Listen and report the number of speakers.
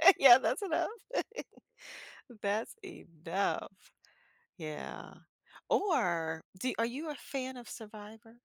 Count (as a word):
one